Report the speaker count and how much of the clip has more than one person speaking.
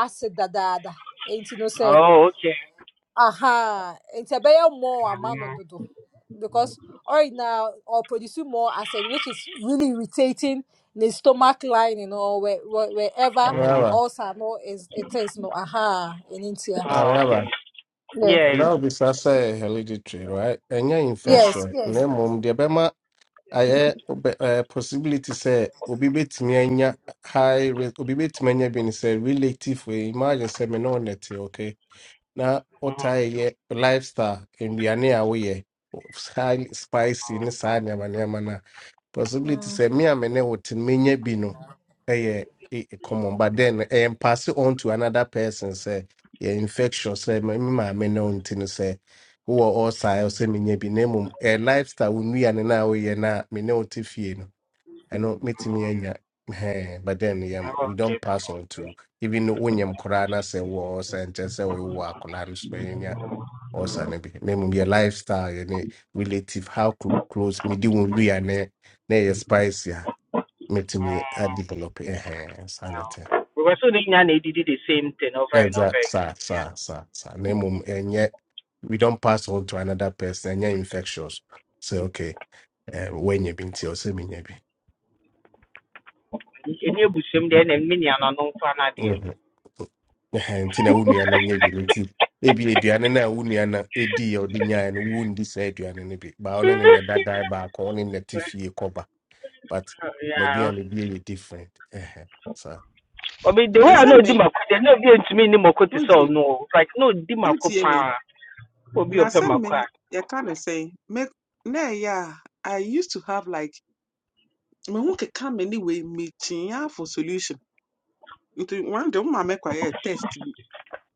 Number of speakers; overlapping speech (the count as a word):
four, about 5%